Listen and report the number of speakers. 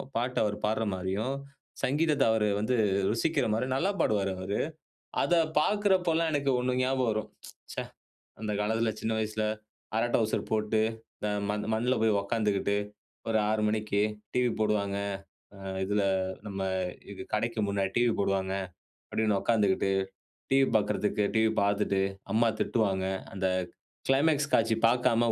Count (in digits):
1